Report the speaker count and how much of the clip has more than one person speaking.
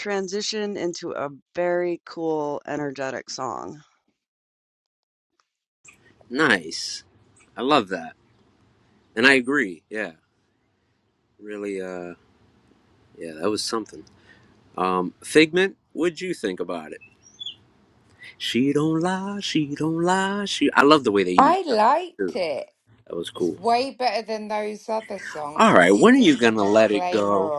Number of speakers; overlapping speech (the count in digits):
3, about 11%